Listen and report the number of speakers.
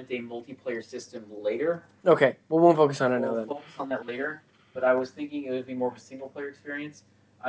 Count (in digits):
2